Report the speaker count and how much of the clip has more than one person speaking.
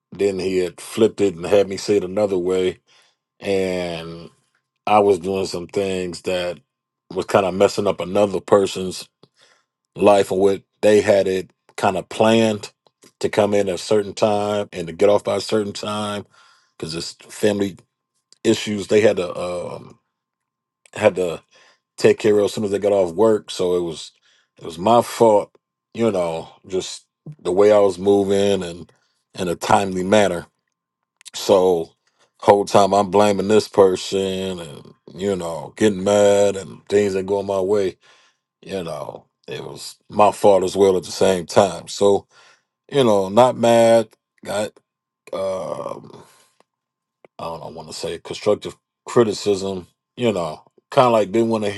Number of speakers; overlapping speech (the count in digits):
1, no overlap